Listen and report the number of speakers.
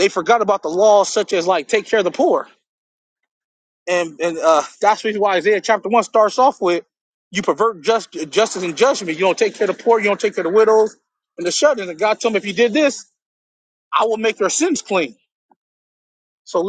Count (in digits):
1